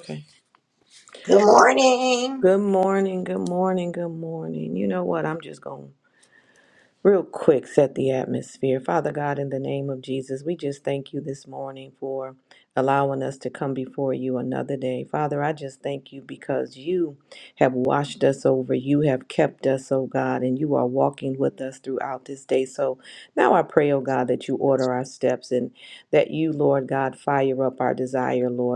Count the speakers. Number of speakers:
two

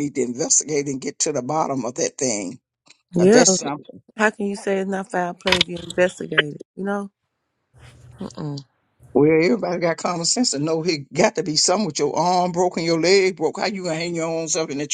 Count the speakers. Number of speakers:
two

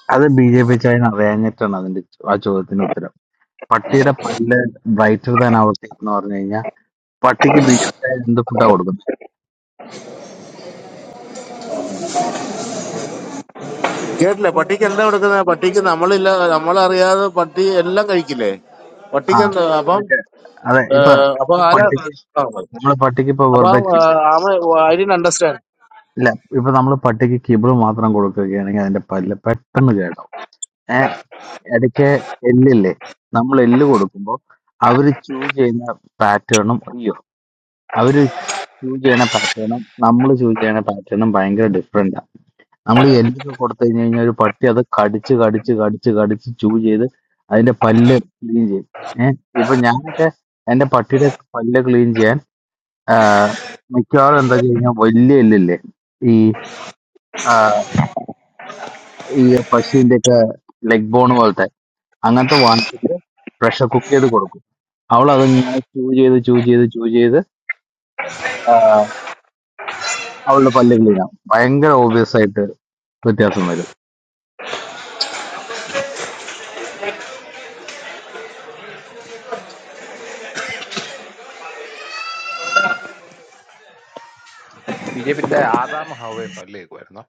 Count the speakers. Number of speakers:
three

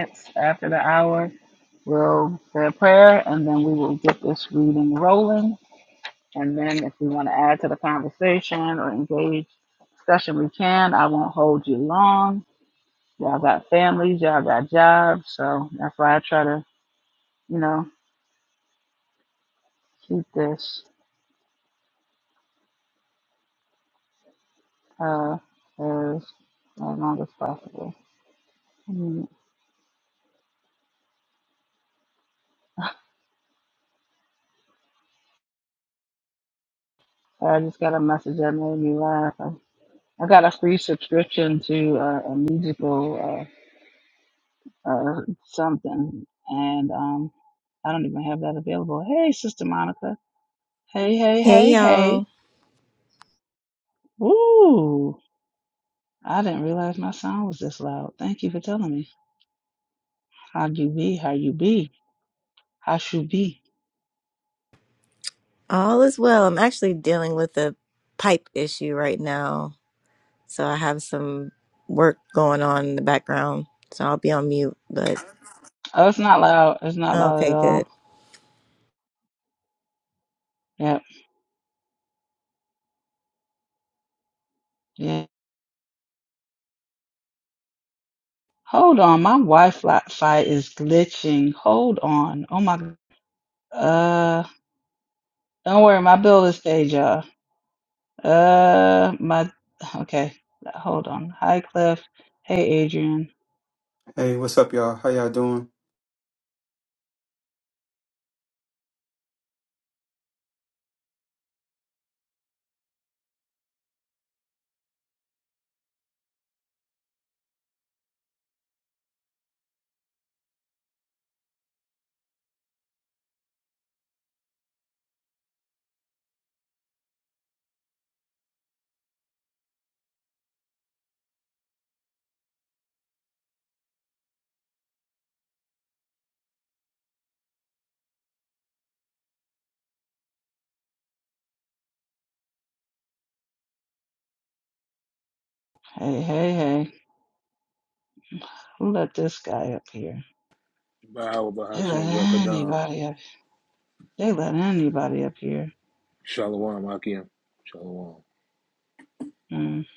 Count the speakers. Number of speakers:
four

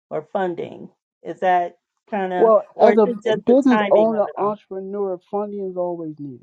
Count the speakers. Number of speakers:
two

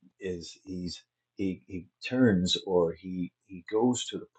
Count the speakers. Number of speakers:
one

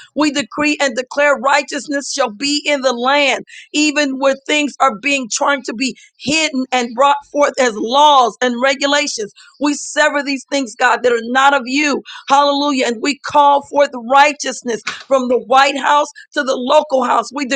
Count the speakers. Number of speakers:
one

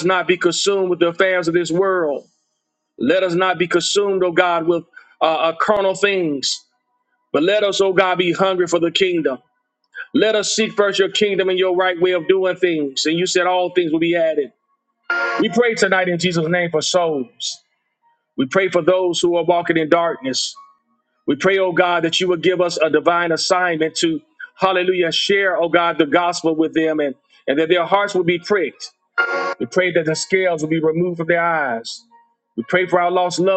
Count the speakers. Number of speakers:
one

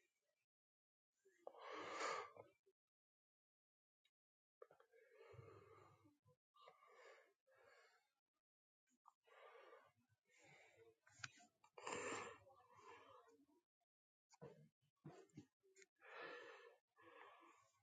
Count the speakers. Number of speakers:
zero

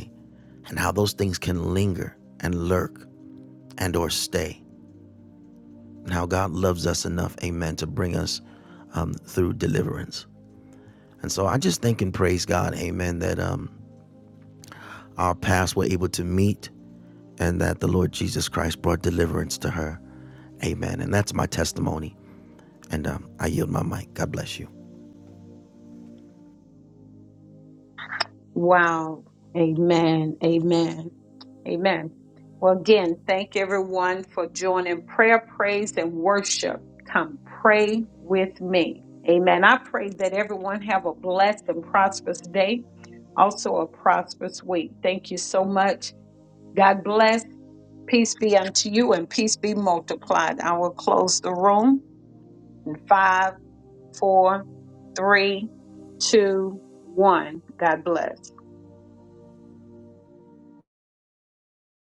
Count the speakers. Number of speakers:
two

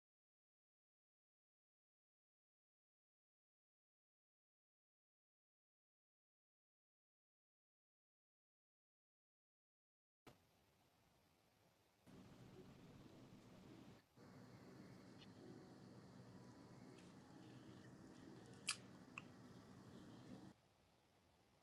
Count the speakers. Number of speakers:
zero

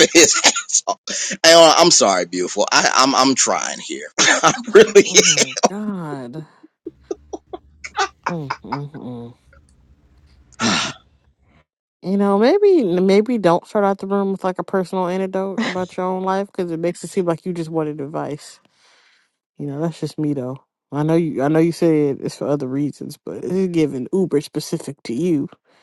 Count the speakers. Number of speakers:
two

